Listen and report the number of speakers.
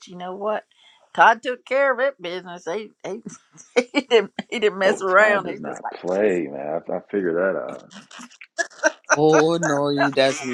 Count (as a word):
three